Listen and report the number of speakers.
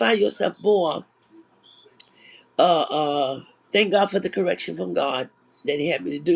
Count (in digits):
1